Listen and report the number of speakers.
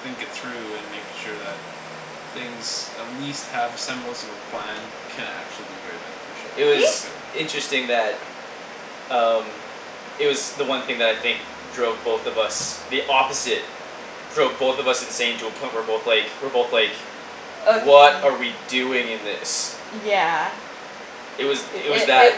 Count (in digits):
3